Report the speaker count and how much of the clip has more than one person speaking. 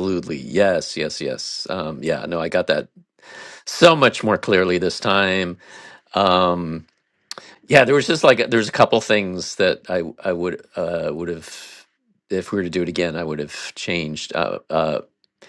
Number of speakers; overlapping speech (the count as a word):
one, no overlap